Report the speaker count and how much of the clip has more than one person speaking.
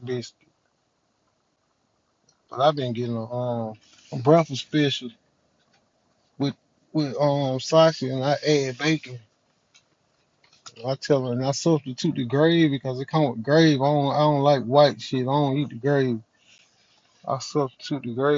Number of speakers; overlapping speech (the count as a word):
one, no overlap